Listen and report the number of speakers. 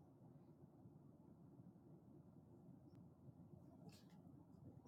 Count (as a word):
zero